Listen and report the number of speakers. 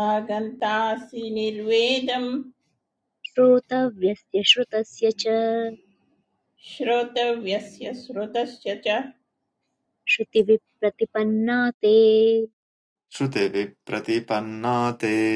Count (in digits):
3